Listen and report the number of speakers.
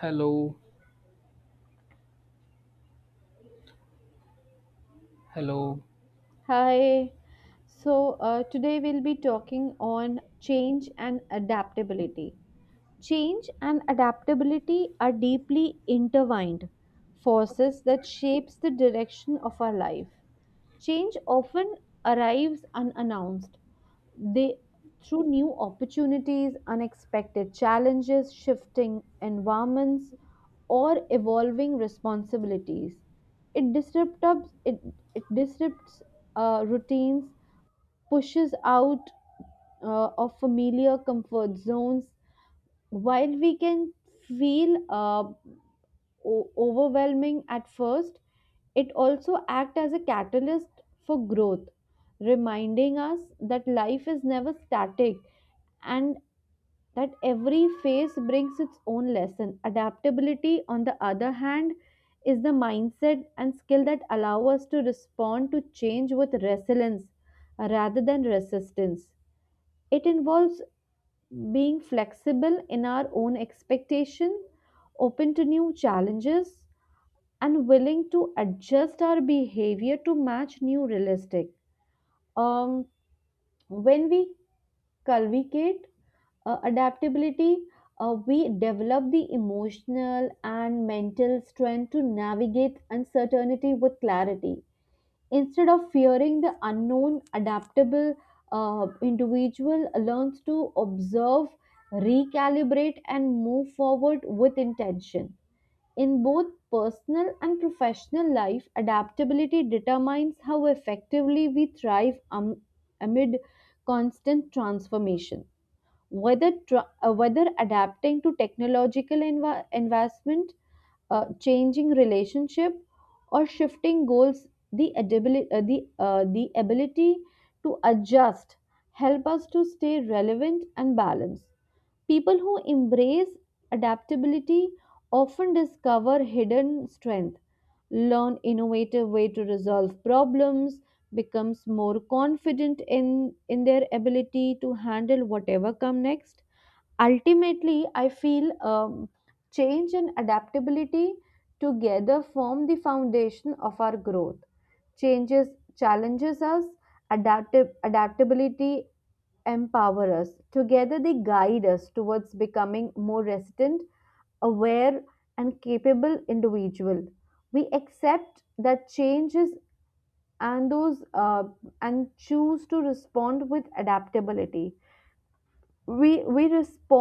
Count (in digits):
2